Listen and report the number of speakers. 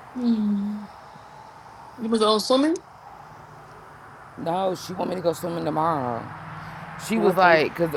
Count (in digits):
2